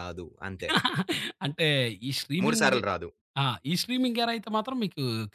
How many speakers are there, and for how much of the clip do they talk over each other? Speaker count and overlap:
2, about 8%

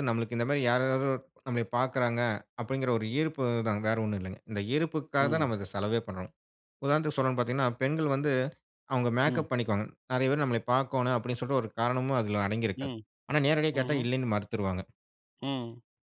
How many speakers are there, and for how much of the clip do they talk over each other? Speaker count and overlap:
2, about 5%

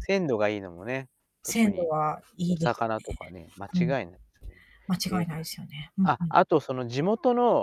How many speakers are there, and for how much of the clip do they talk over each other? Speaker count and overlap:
2, about 19%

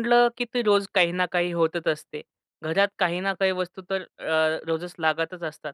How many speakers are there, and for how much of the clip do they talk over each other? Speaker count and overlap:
1, no overlap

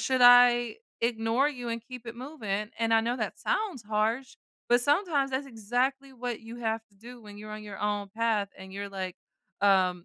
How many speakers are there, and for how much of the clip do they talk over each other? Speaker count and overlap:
1, no overlap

